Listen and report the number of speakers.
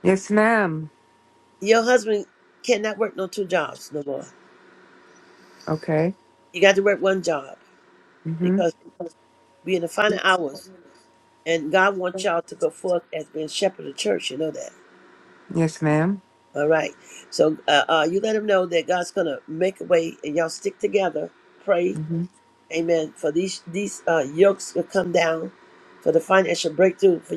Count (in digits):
2